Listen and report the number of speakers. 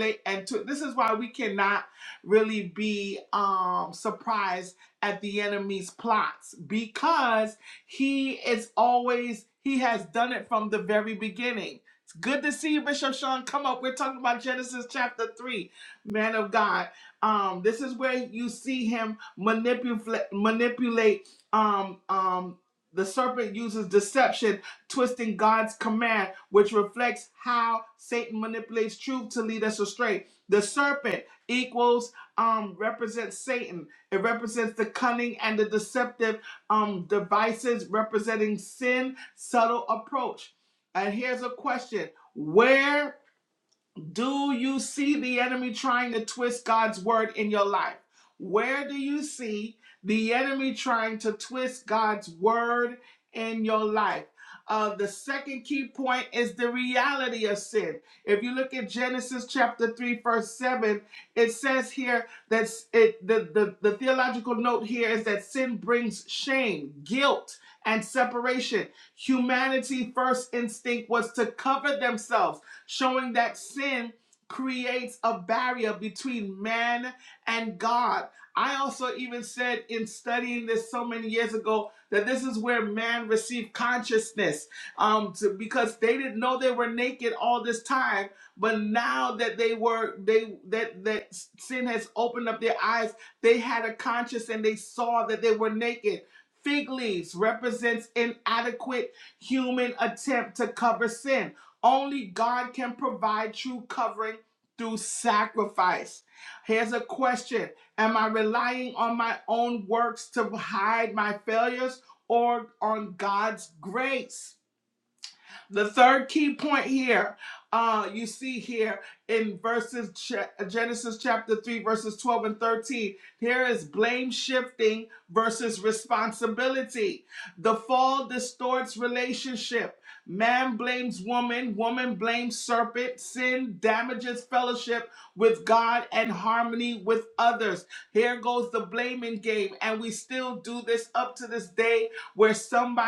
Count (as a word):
one